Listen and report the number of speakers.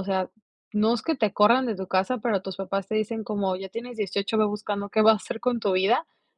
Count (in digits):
1